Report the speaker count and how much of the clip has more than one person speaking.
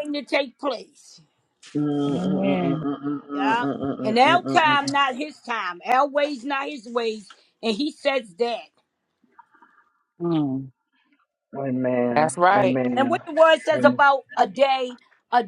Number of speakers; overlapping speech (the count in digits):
3, about 21%